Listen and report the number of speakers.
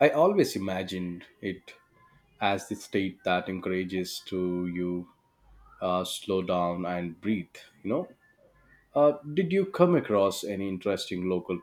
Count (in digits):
1